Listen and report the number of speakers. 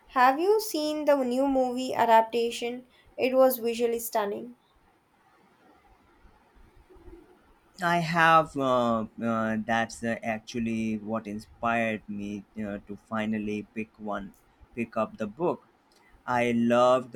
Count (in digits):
2